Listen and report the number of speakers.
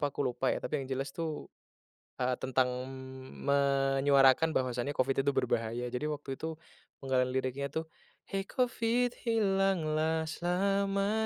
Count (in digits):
1